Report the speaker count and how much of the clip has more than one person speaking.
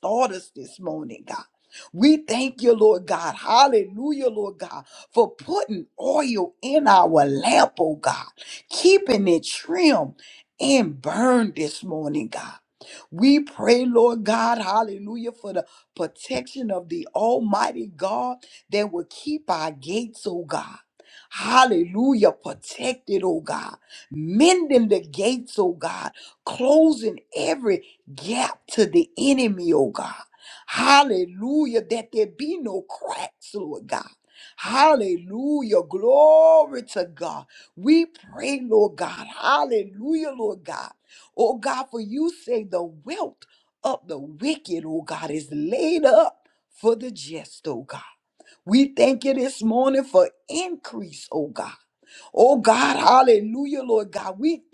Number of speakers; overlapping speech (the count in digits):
1, no overlap